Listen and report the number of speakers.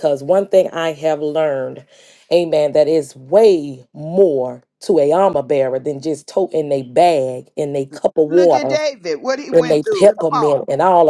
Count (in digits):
2